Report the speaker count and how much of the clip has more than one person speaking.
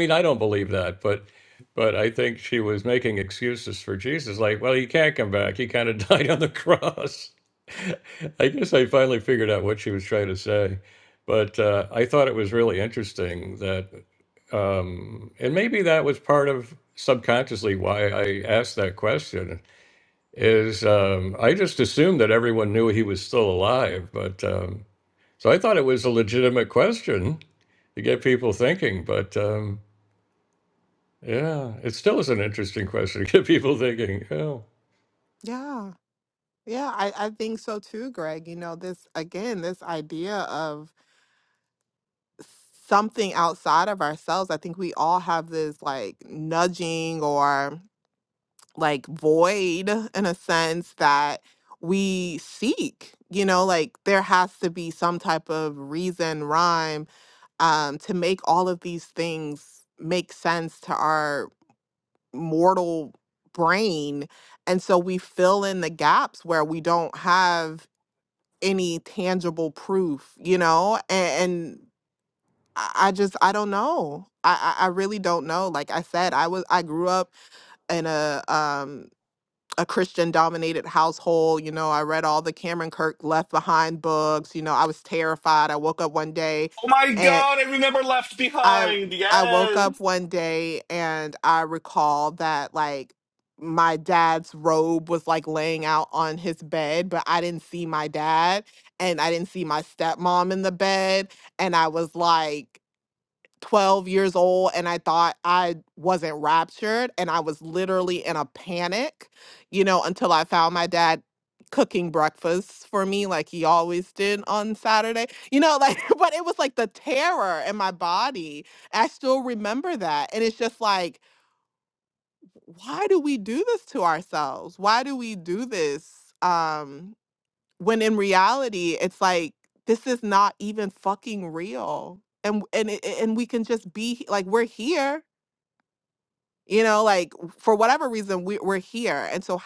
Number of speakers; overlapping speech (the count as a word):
three, about 1%